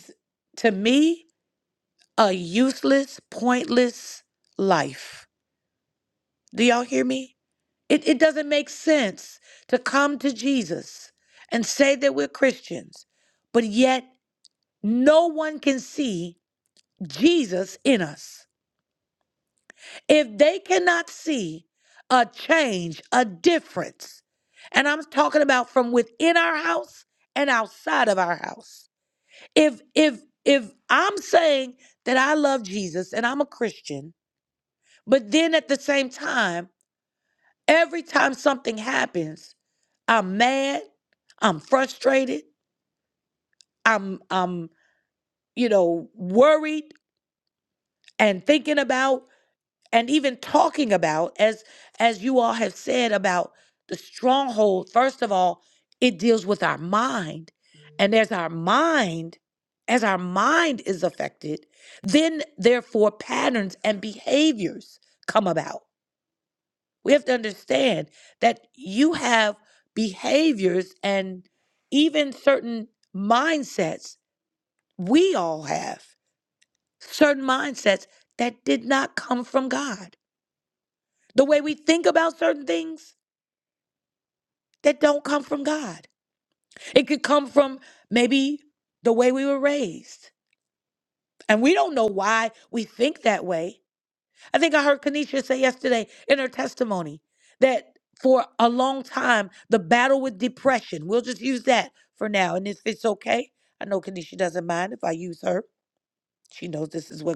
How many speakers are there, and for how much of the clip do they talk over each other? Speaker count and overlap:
1, no overlap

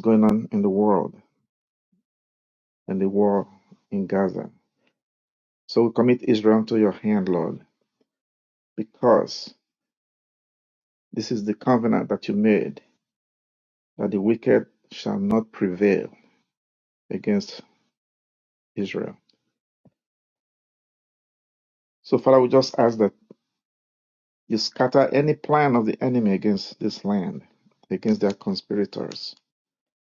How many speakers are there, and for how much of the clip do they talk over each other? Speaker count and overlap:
1, no overlap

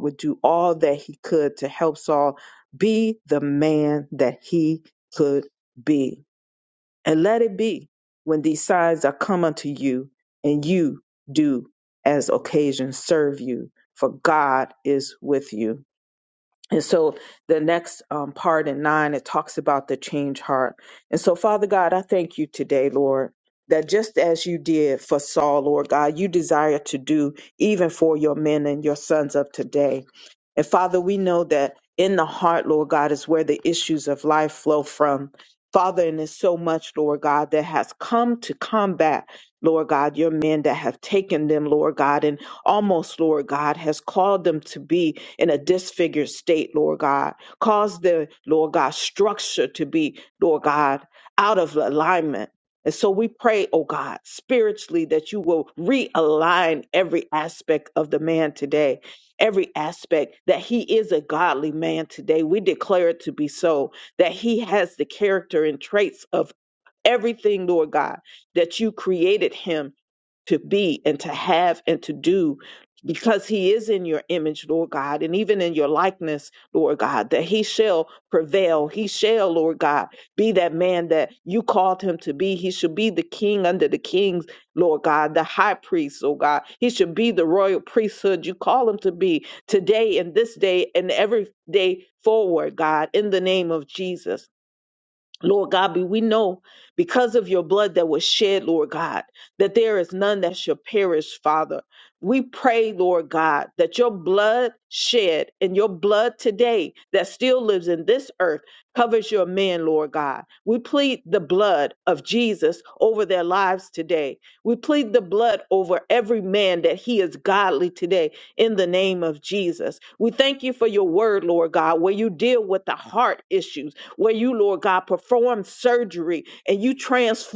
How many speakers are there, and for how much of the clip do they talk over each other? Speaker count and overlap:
1, no overlap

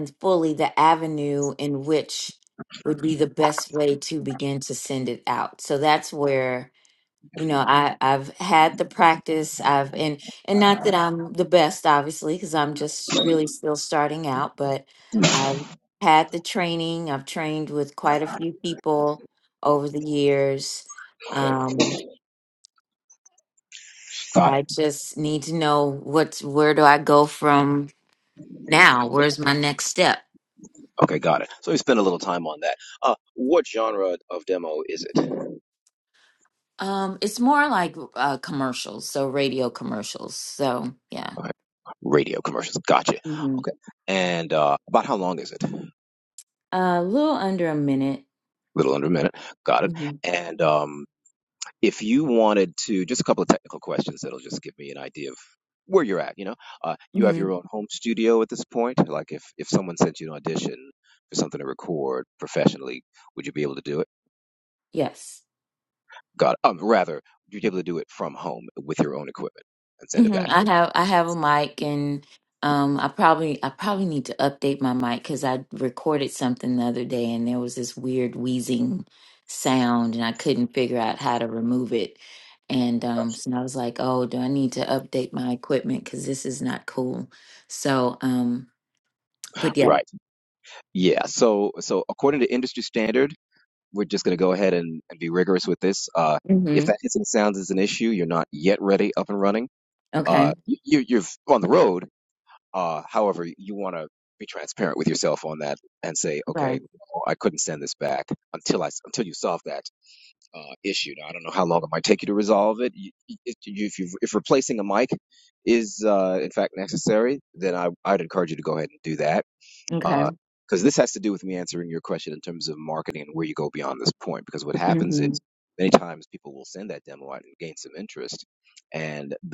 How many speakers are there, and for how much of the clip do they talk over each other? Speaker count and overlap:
2, about 2%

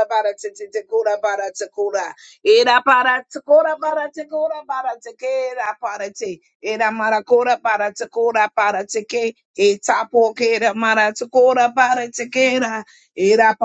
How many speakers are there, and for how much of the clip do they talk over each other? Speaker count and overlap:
1, no overlap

